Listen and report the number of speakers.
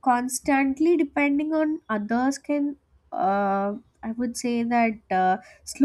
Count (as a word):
one